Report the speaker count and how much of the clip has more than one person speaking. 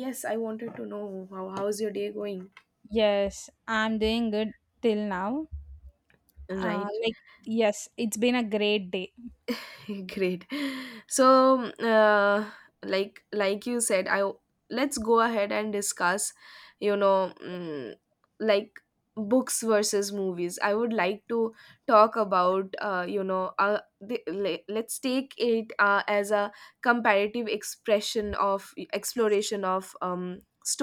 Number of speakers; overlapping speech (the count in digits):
2, about 1%